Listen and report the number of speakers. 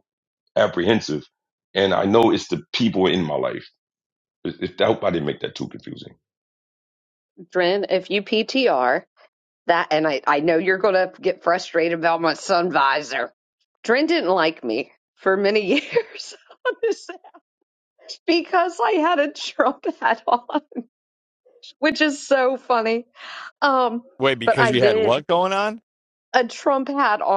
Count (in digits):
3